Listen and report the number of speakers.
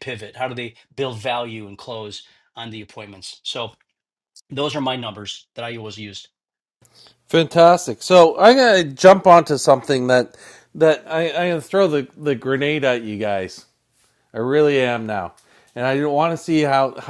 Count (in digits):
2